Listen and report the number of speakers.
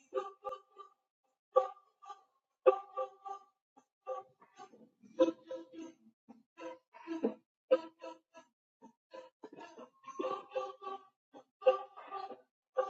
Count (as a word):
zero